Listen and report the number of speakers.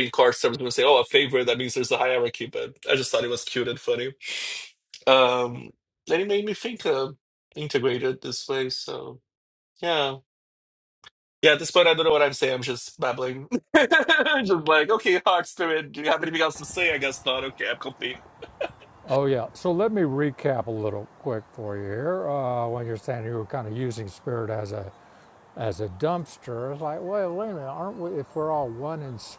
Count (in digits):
2